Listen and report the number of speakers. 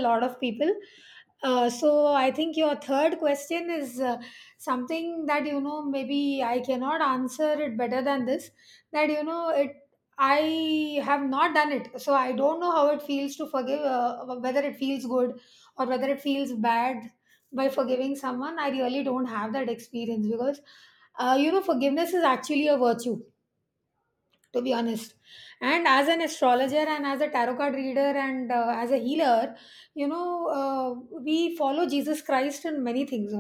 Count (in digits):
1